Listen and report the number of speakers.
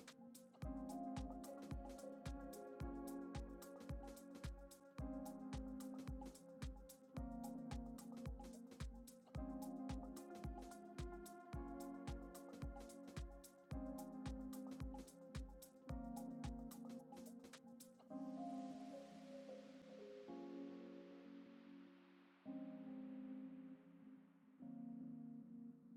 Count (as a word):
zero